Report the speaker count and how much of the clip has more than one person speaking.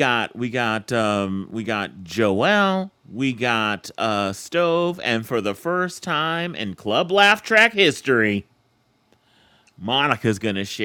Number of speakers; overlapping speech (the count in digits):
1, no overlap